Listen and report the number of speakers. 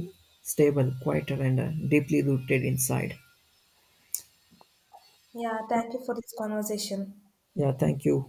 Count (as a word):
two